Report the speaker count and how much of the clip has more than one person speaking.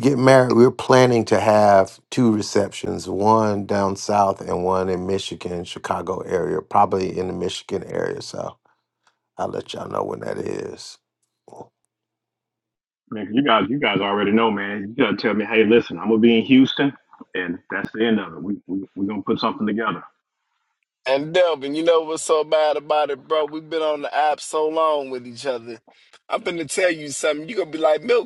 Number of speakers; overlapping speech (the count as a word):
three, no overlap